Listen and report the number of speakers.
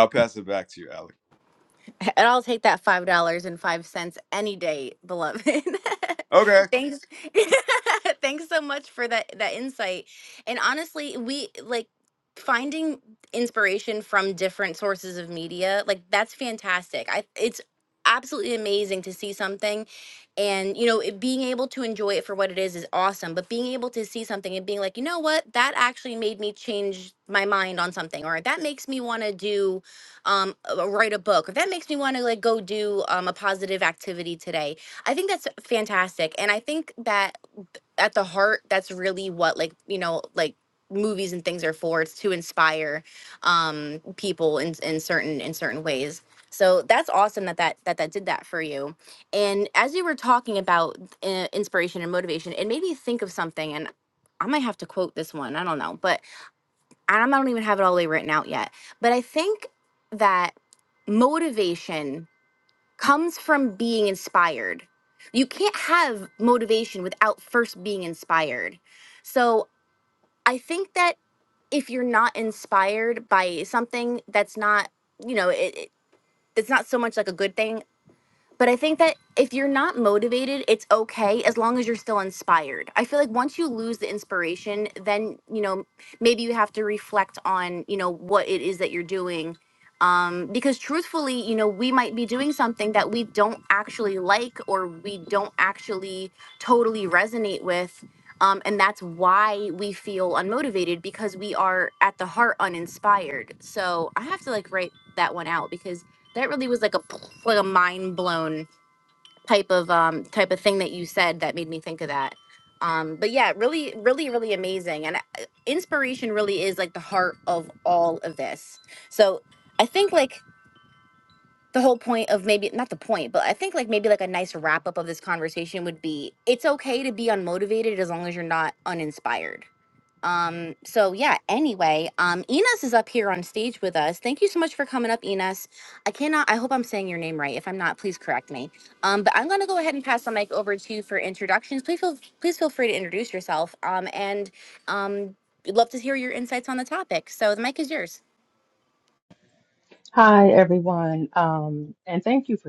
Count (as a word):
three